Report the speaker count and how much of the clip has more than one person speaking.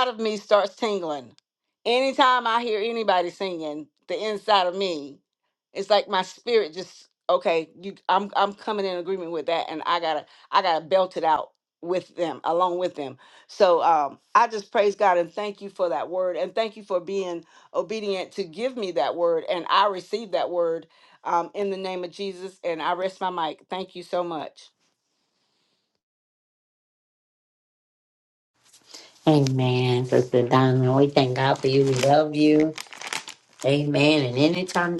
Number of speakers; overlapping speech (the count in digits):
2, no overlap